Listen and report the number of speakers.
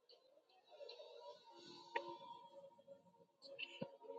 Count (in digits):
0